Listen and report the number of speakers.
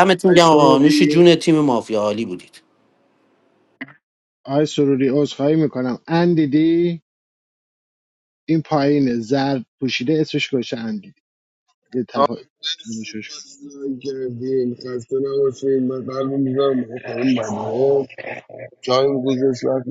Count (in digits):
3